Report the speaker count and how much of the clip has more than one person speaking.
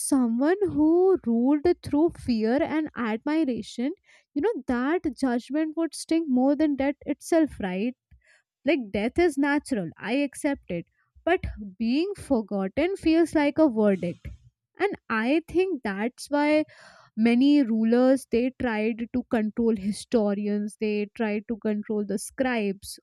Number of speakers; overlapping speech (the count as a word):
one, no overlap